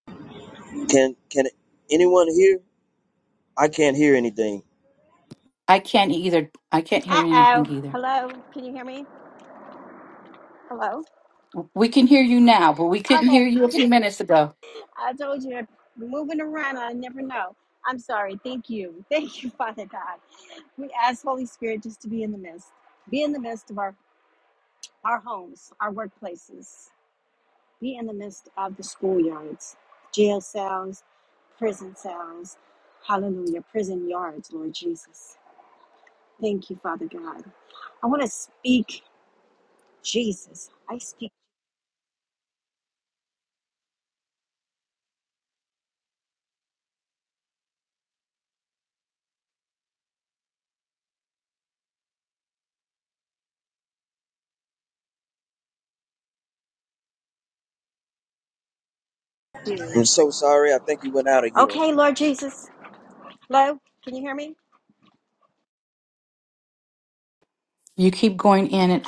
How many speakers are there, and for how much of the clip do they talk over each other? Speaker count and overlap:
3, about 2%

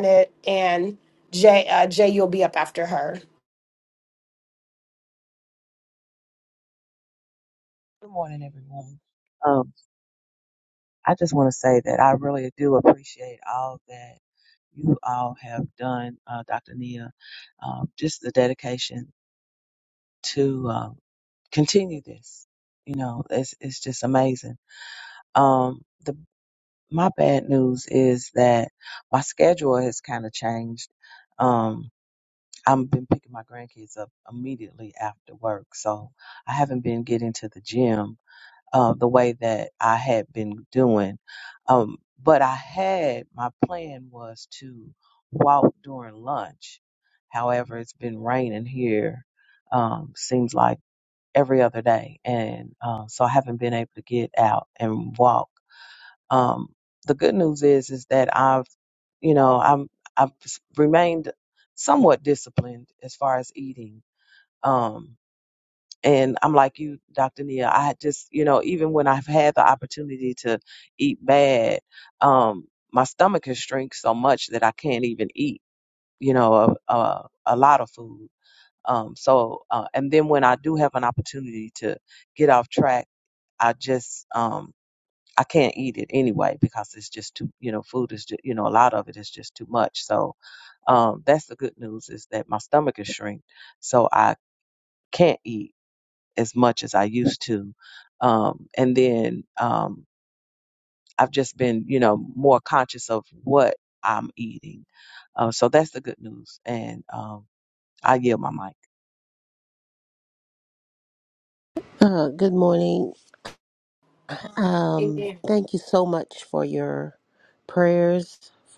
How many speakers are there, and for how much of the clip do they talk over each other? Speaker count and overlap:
3, under 1%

